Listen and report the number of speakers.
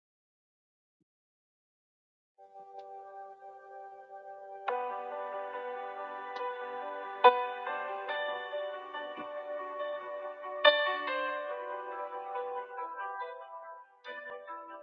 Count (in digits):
0